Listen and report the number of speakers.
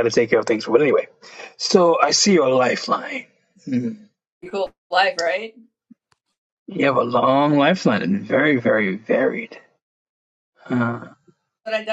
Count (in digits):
2